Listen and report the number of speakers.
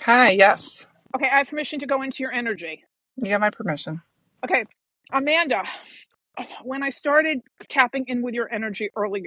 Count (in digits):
2